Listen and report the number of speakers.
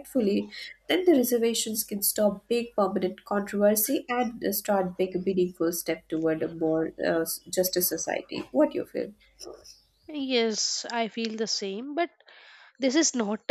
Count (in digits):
2